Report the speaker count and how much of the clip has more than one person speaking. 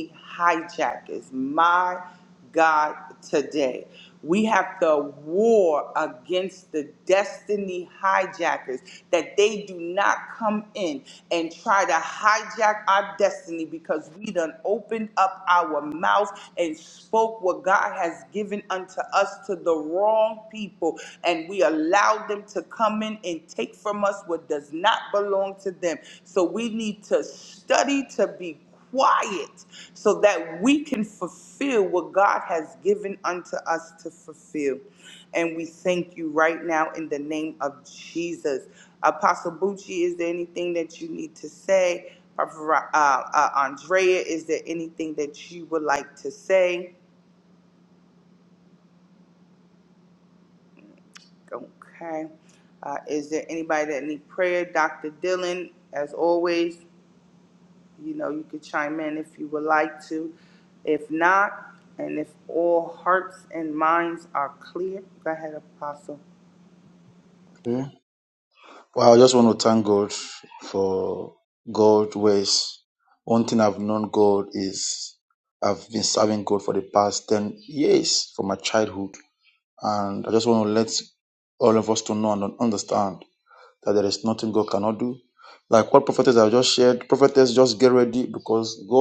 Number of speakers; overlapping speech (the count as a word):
two, no overlap